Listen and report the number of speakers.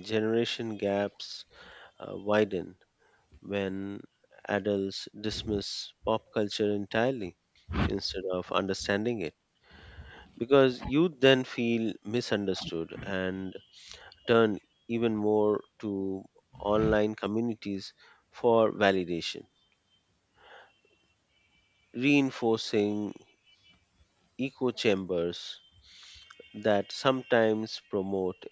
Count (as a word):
one